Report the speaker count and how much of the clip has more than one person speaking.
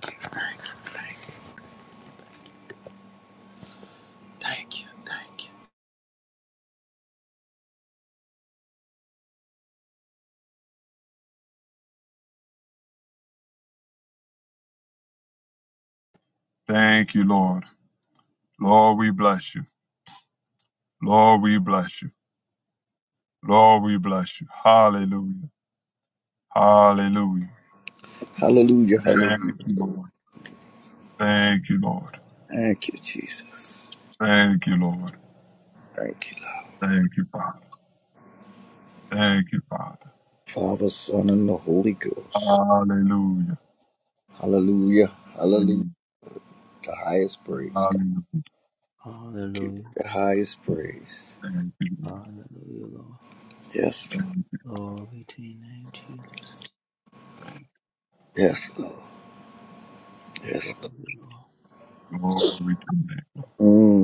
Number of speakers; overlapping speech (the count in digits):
3, about 3%